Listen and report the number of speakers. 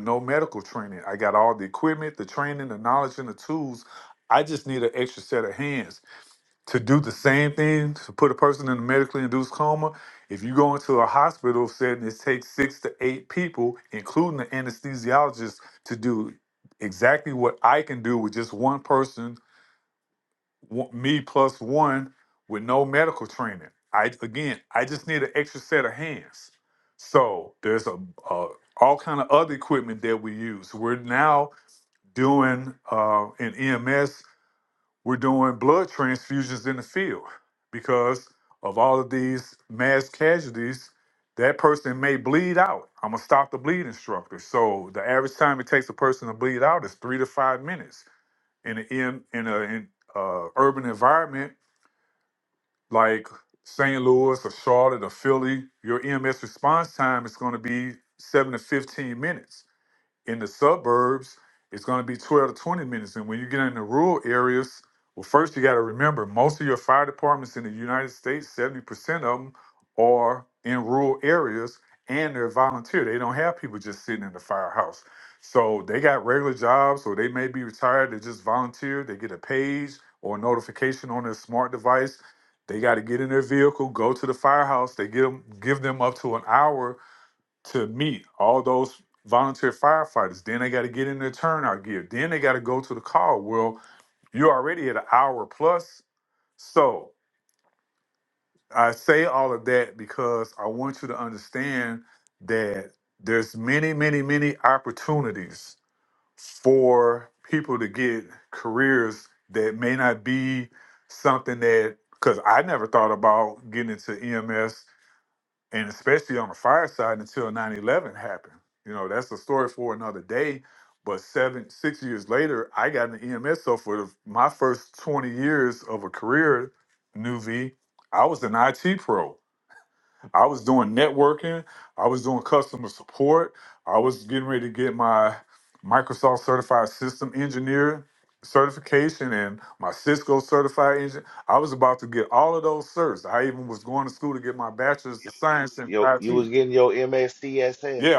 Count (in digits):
2